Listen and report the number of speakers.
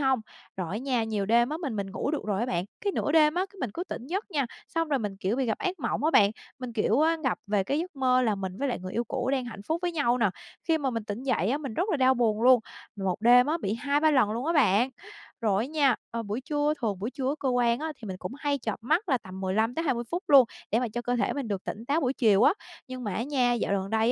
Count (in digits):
1